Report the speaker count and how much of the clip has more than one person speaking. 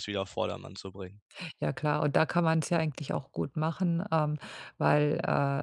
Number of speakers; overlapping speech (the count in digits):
2, no overlap